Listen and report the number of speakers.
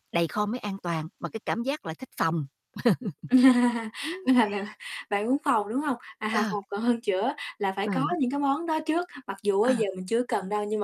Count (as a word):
two